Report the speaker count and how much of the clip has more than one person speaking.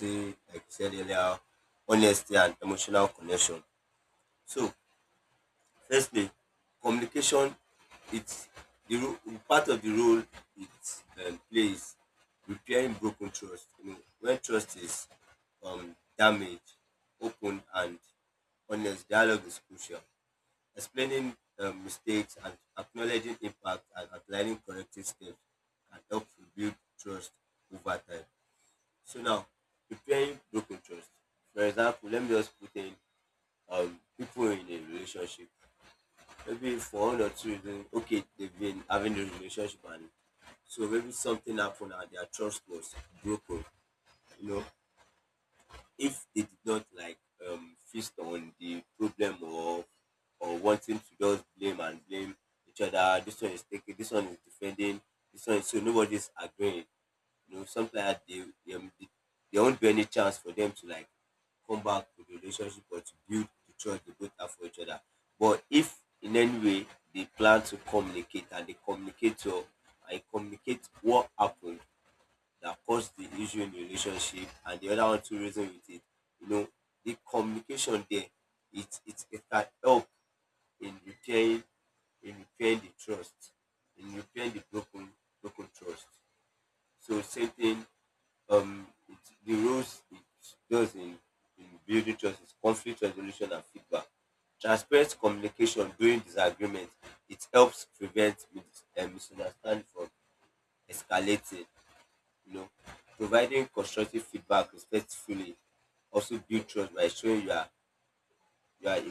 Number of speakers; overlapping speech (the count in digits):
1, no overlap